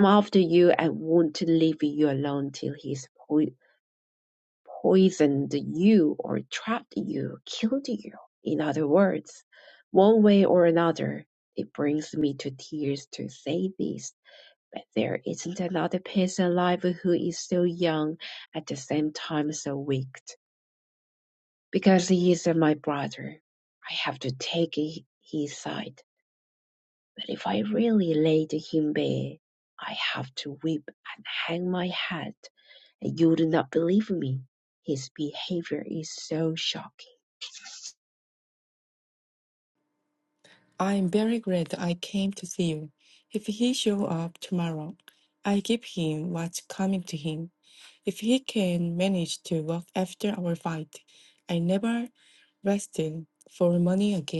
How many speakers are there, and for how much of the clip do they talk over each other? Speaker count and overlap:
2, no overlap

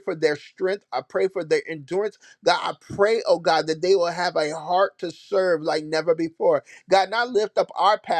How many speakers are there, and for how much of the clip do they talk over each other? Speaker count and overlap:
1, no overlap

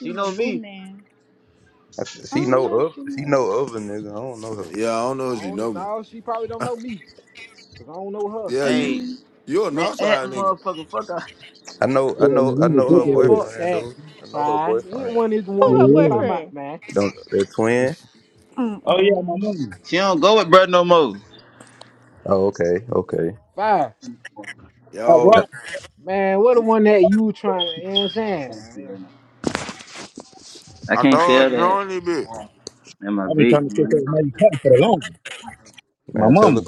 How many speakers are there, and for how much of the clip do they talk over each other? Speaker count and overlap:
6, about 28%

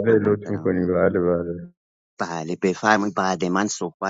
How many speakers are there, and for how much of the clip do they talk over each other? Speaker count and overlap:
2, about 17%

